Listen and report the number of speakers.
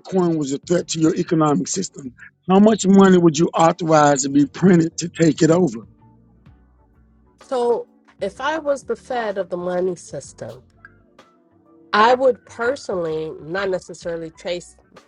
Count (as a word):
two